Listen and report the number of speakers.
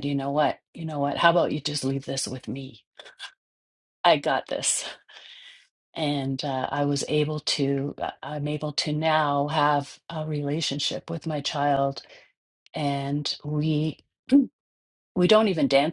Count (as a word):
one